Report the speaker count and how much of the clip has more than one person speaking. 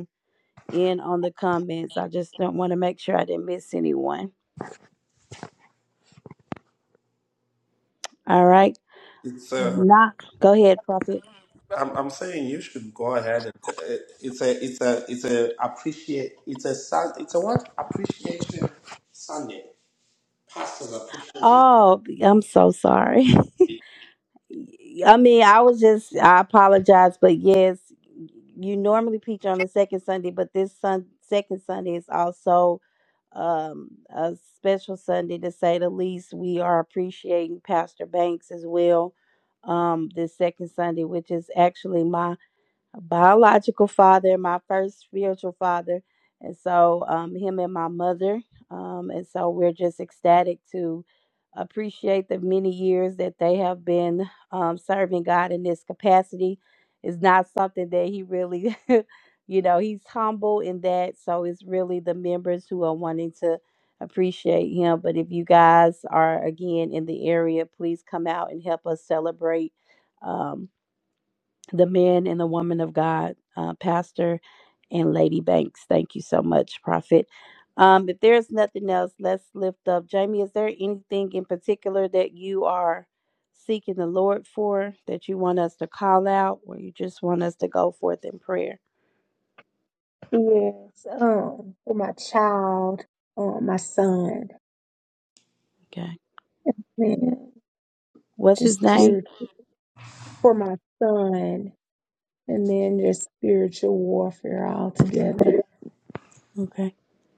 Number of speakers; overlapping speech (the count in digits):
3, about 1%